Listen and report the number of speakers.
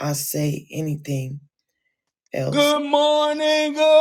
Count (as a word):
two